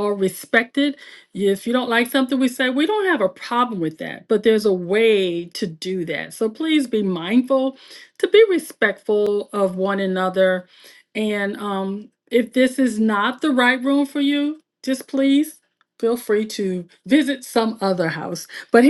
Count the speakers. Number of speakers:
1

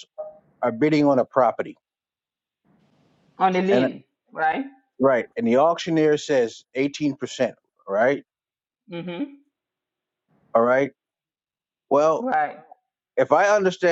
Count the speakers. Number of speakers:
2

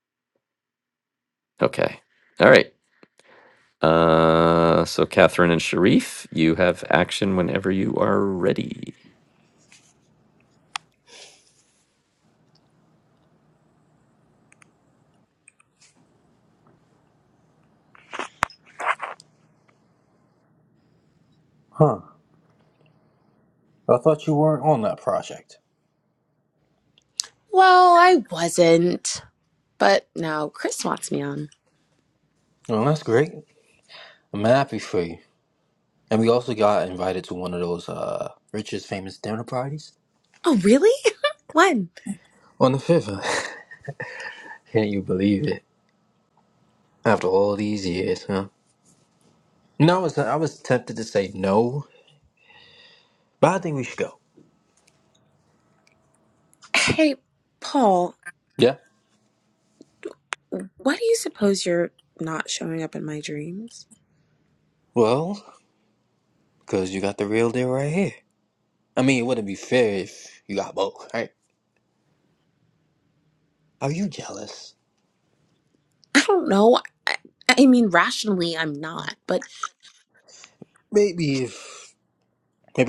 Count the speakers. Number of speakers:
3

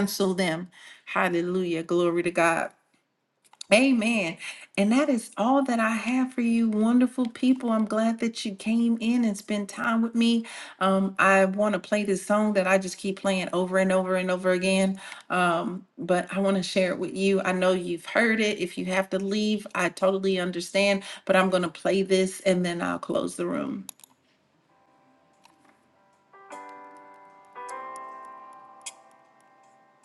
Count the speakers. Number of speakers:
1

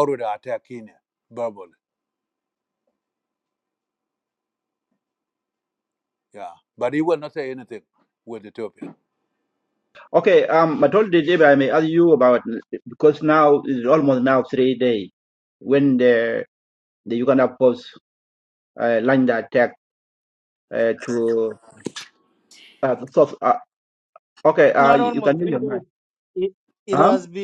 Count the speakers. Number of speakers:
3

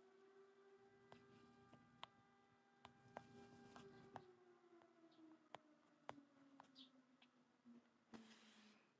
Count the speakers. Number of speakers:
0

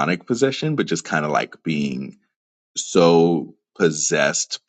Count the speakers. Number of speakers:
1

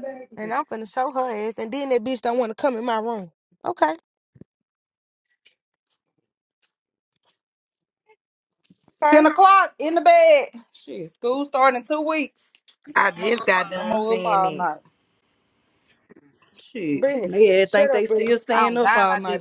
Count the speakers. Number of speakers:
3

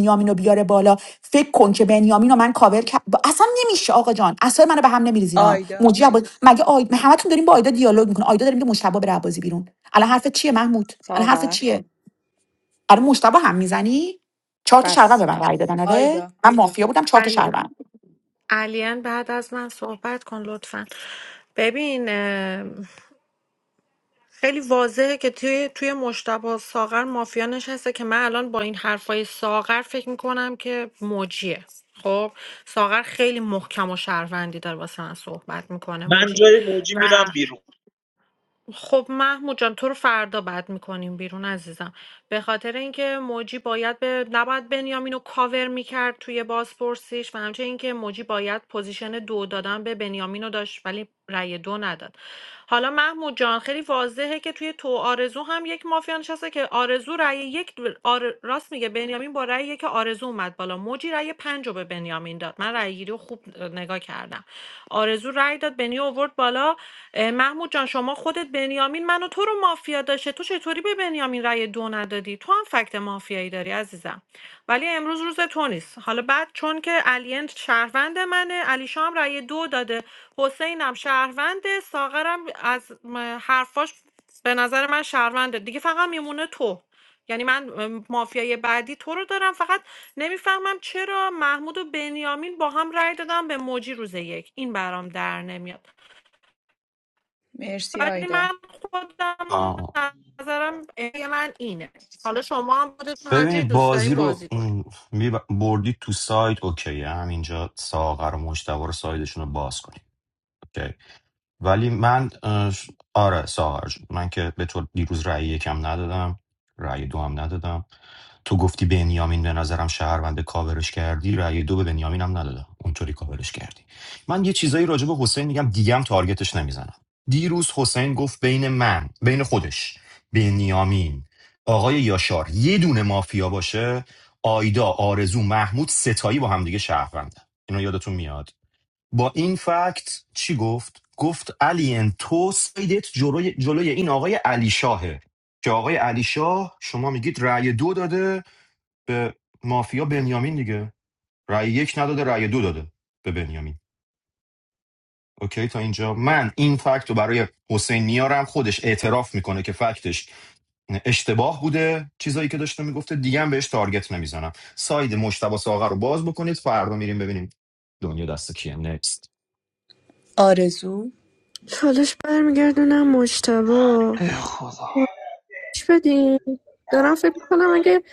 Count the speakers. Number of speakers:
6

